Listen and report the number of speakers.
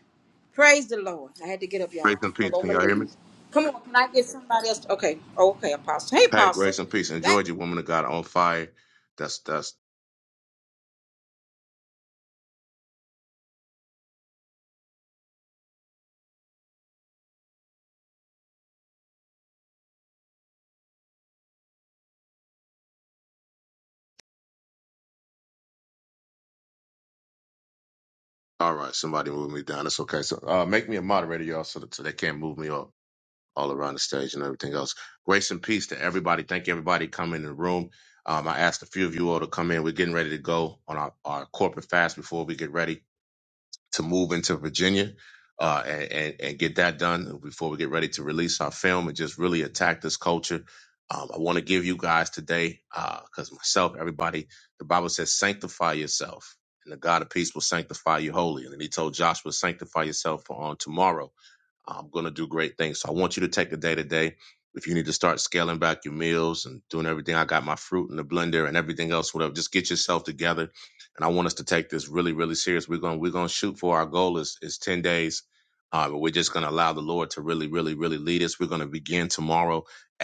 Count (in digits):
2